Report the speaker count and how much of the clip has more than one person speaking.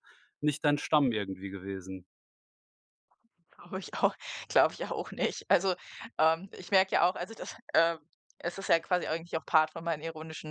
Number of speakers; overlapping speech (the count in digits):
2, no overlap